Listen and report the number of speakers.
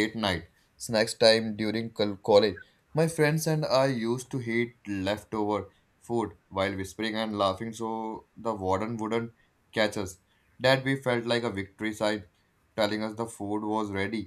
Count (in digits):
1